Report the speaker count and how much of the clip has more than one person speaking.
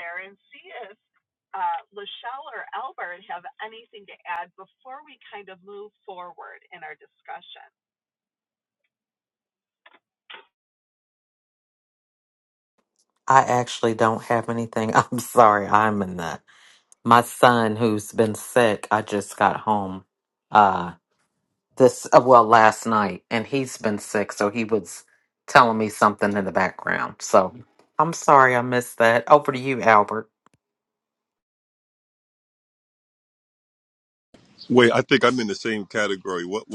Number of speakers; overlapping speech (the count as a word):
three, no overlap